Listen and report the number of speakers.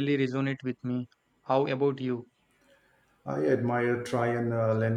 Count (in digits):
2